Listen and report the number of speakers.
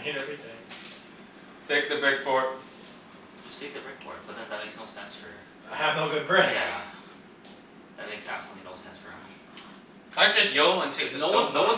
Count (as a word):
three